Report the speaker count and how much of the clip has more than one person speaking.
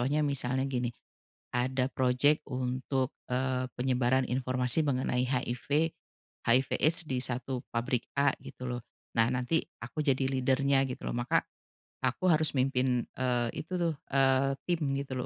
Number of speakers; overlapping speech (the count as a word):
one, no overlap